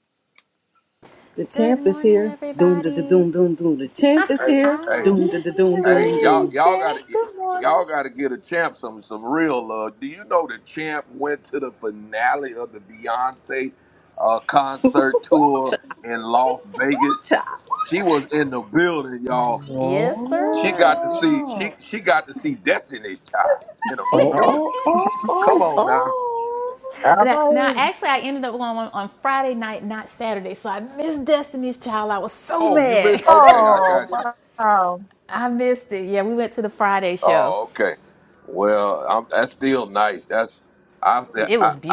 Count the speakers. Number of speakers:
five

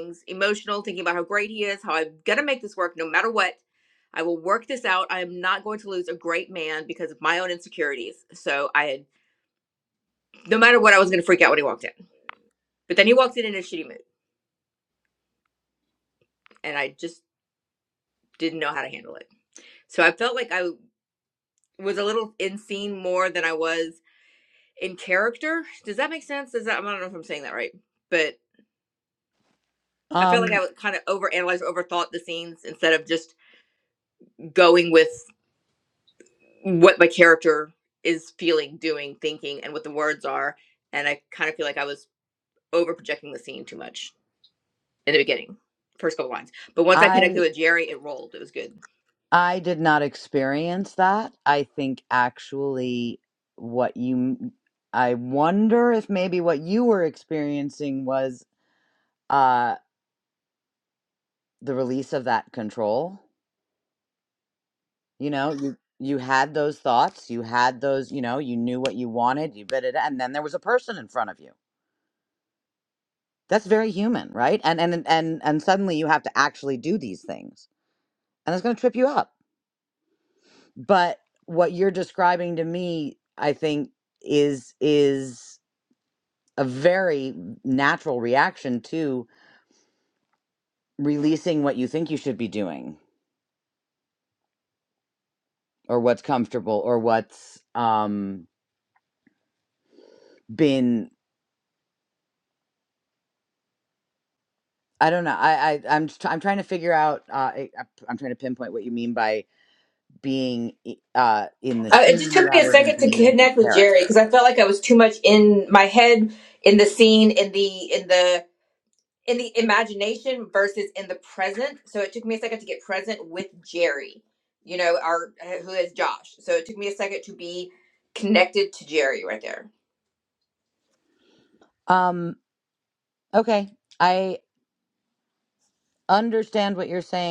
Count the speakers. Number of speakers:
two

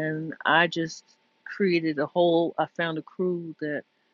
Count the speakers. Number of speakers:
one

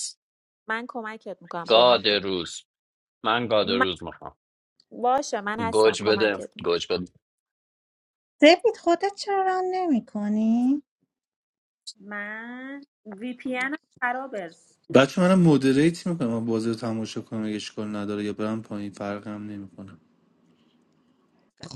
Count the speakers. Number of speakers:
four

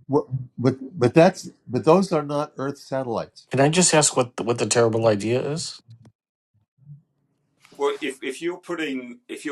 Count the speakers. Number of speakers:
three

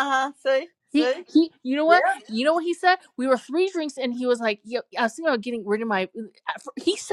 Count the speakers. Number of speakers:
two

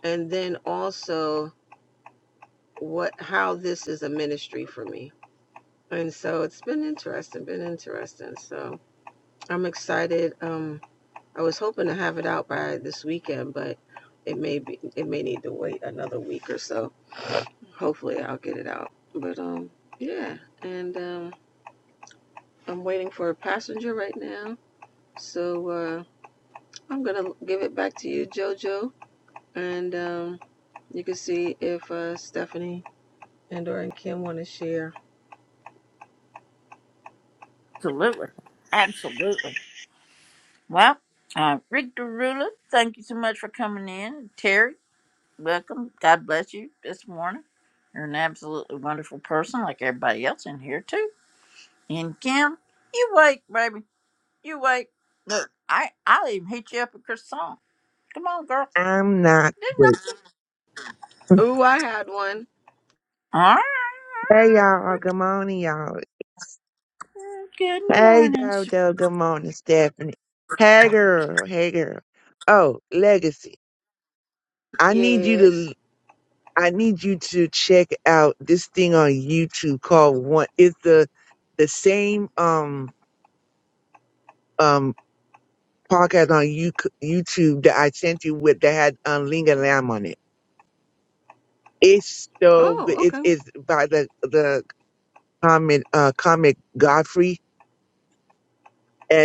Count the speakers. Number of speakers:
three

